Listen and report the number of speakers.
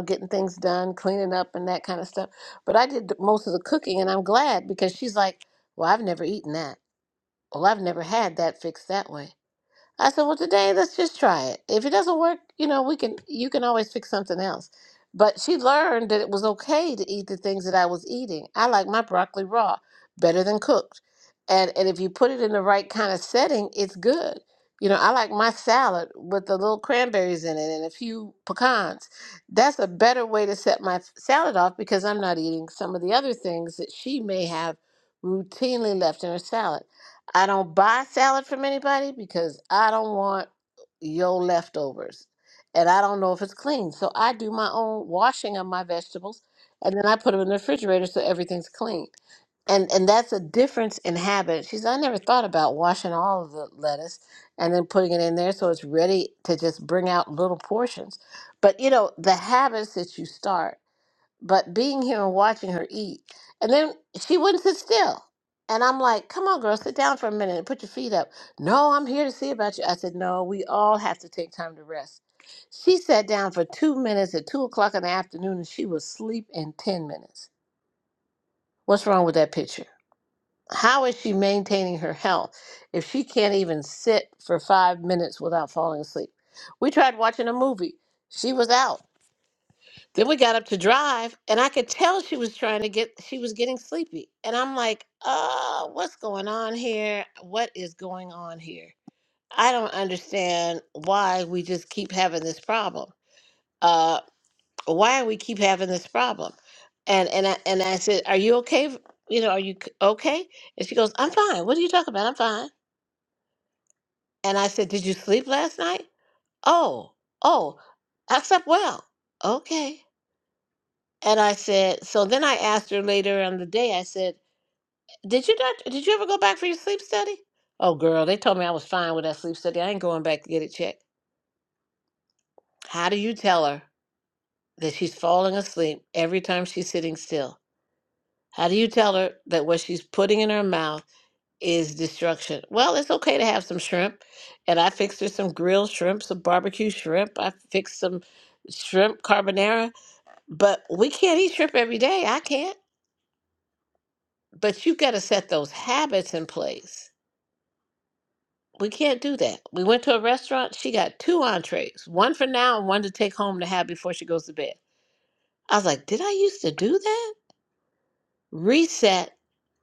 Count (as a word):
one